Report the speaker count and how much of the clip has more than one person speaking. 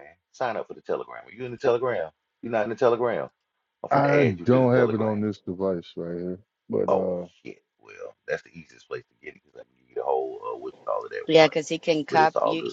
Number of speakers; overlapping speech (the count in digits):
3, about 18%